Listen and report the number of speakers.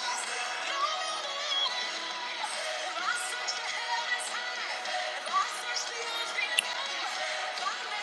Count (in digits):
0